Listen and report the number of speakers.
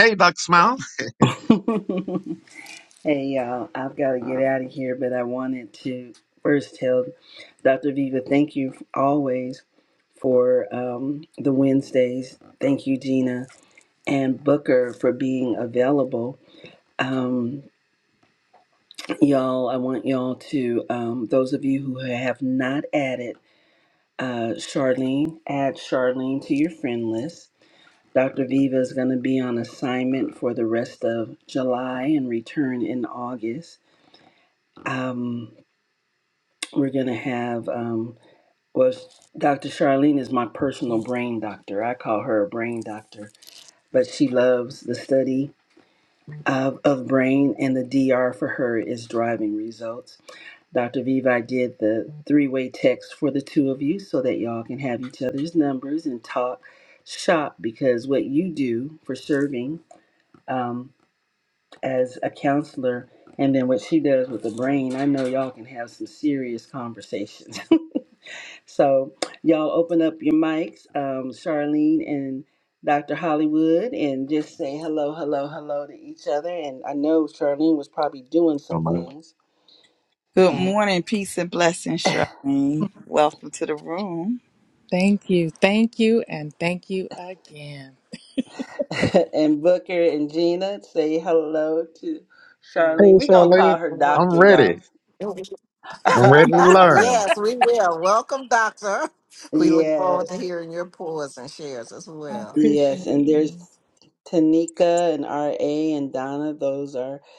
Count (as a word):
five